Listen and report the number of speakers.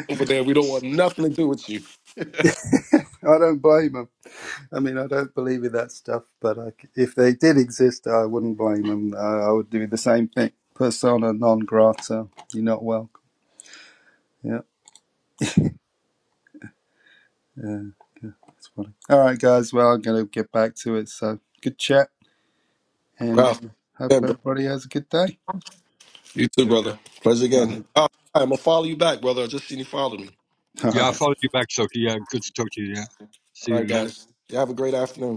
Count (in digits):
3